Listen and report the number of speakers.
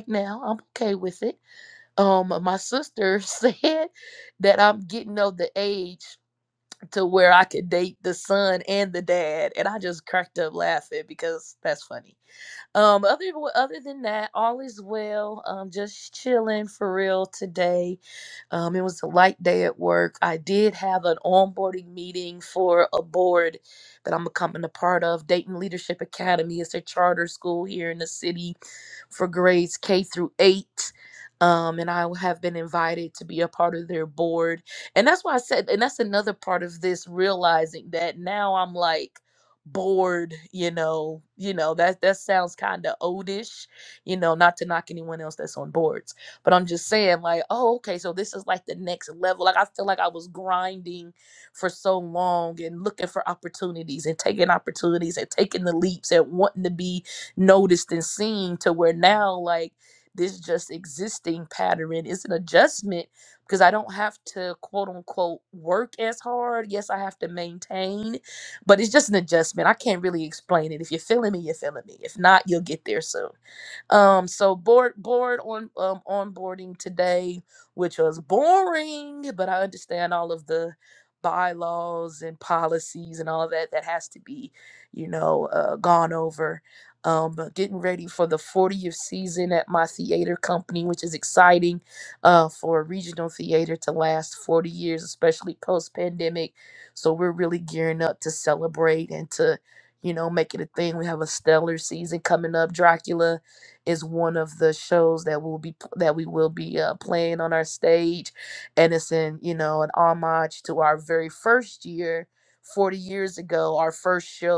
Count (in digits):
1